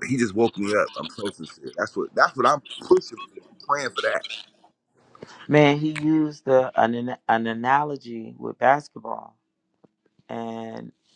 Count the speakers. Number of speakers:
two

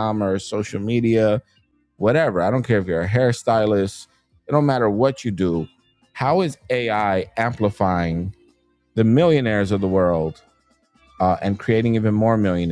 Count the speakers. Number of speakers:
one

